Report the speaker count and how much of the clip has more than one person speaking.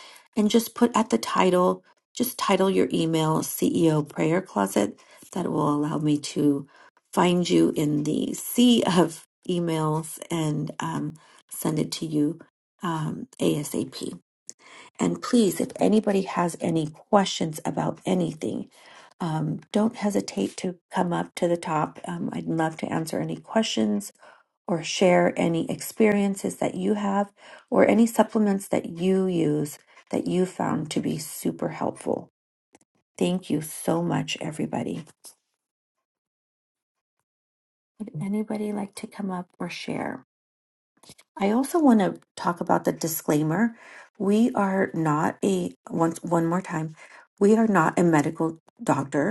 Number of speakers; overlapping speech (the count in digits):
1, no overlap